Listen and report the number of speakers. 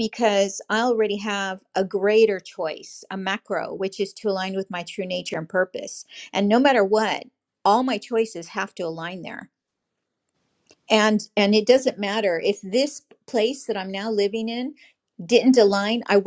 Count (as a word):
one